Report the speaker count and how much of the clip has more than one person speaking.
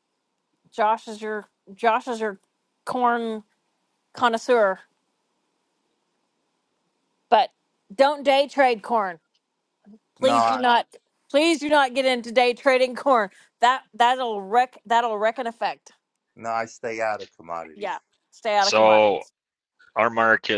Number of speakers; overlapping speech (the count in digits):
3, about 5%